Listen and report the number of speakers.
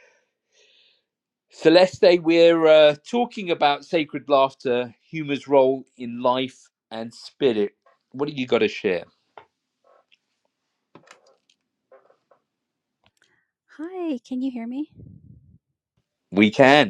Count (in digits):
2